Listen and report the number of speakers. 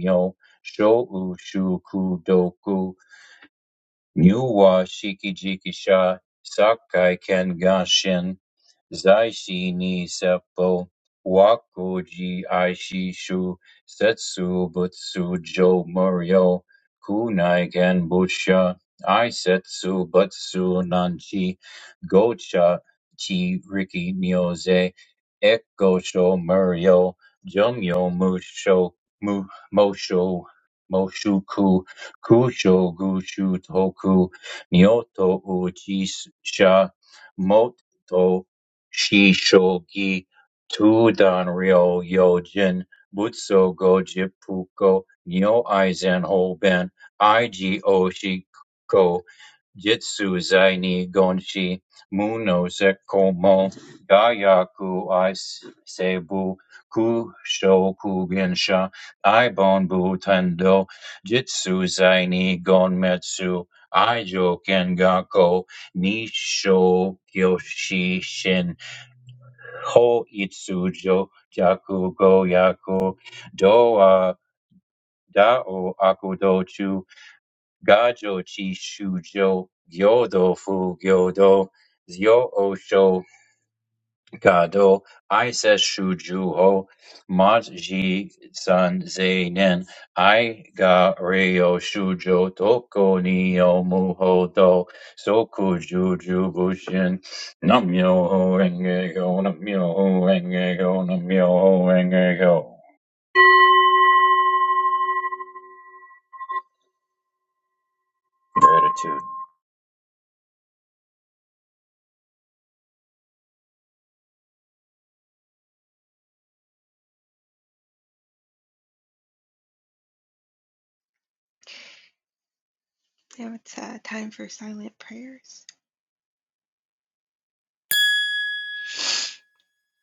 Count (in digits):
2